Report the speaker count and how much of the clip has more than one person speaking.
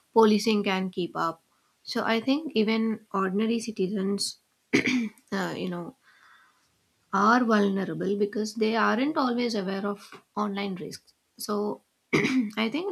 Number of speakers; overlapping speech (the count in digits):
1, no overlap